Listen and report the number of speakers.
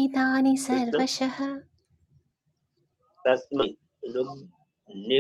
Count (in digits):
2